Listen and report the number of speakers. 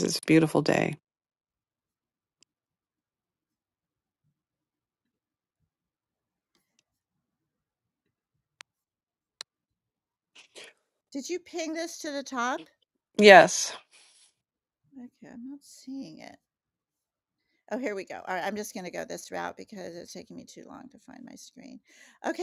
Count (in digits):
2